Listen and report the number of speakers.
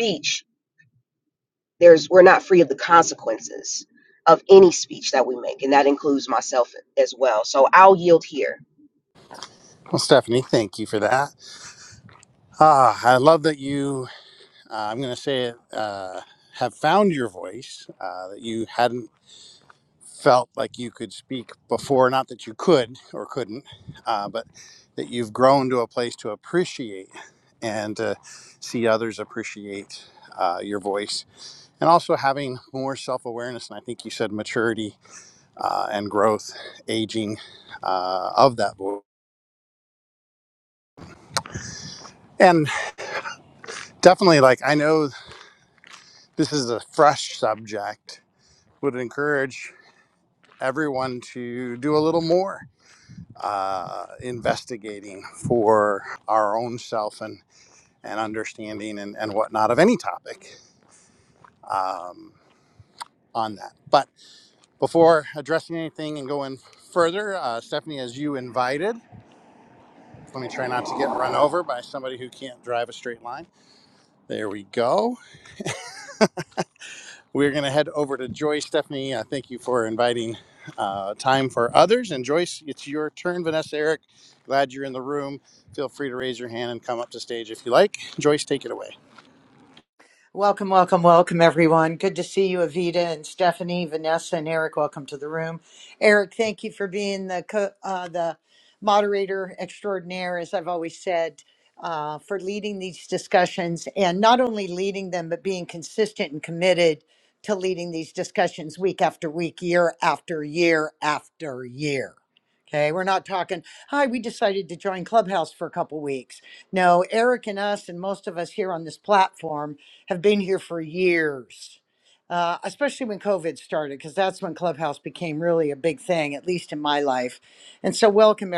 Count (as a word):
three